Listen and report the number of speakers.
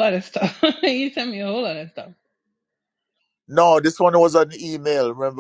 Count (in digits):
2